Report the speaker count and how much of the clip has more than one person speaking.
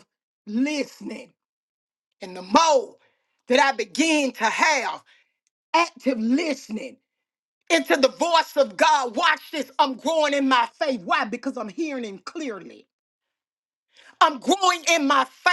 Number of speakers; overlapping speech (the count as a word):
one, no overlap